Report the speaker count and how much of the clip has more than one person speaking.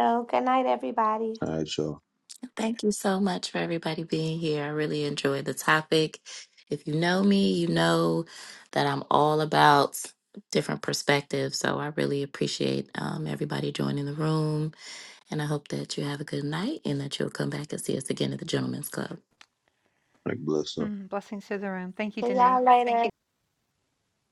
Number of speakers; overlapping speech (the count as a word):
four, about 2%